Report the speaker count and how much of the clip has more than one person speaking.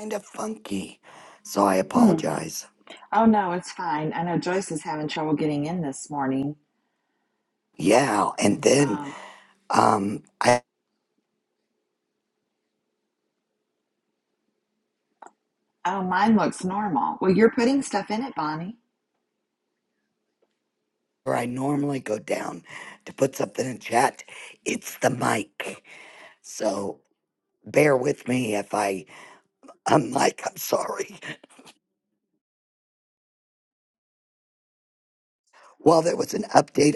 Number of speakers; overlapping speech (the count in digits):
2, about 2%